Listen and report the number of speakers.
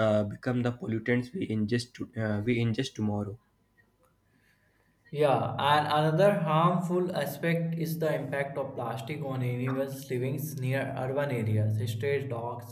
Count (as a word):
two